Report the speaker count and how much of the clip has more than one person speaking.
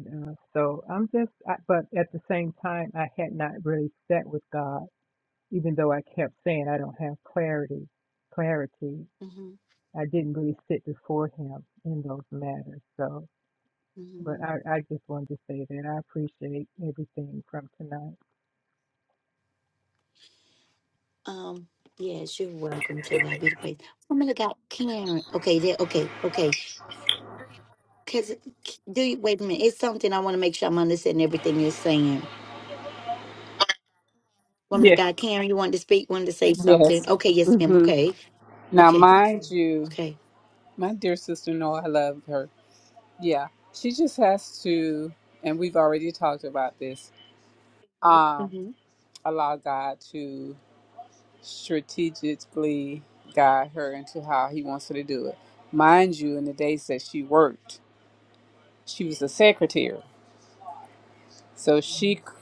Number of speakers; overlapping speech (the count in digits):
3, about 3%